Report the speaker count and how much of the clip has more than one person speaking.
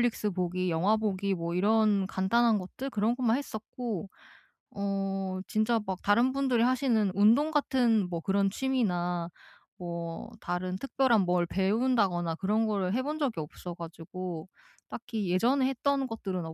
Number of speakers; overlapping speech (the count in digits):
1, no overlap